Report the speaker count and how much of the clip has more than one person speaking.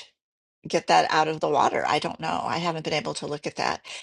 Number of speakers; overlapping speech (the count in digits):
1, no overlap